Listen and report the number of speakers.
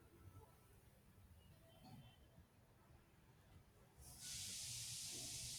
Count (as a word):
zero